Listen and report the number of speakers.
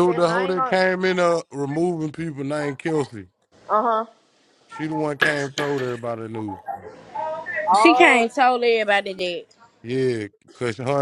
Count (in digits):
3